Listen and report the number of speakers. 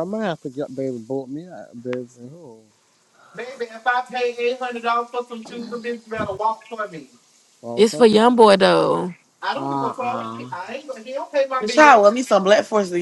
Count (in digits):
4